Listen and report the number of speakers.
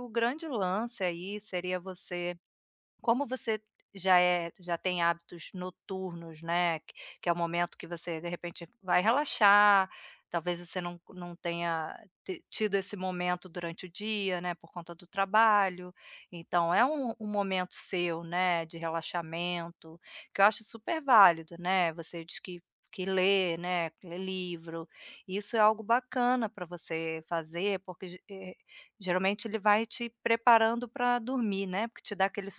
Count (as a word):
one